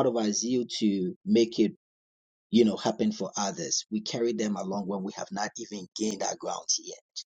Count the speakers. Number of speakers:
one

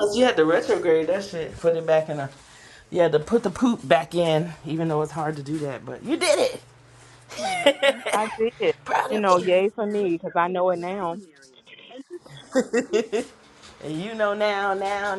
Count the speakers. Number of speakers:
two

